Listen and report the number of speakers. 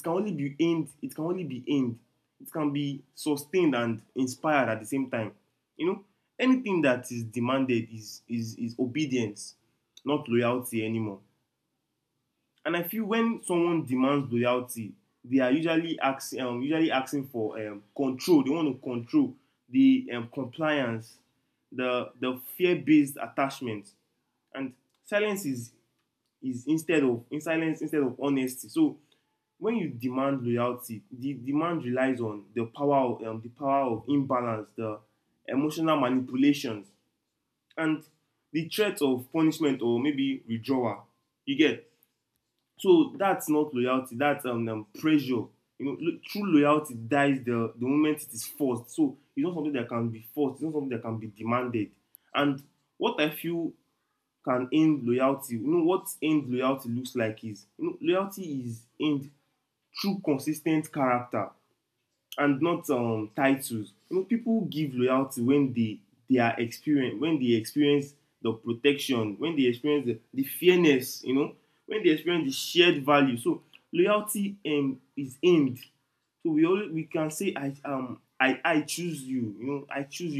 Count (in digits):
1